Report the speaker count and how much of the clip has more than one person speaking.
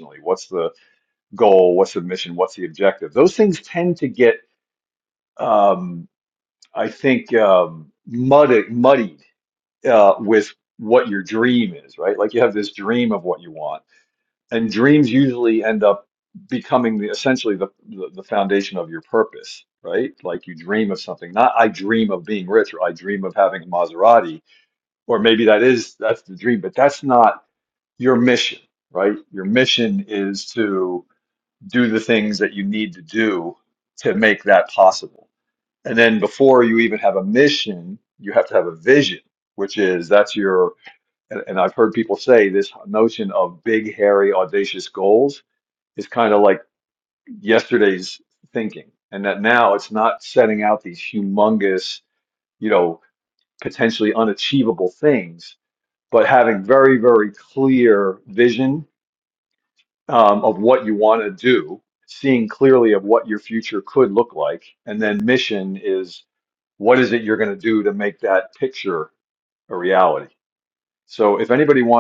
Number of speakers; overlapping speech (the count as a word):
one, no overlap